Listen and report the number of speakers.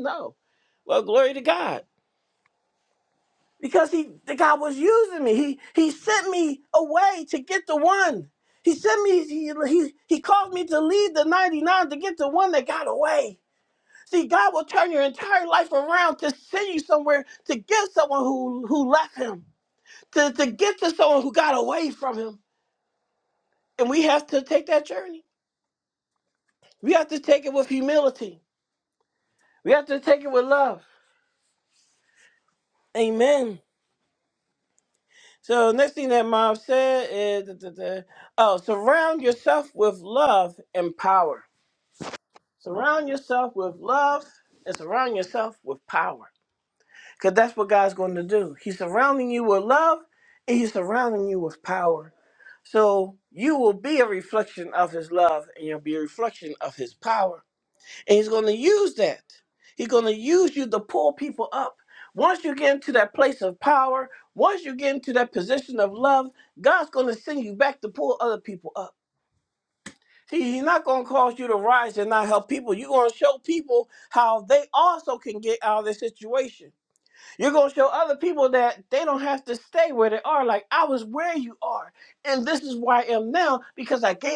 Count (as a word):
one